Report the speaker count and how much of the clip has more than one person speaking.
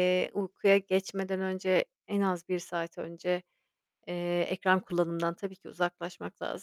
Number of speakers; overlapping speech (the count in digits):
1, no overlap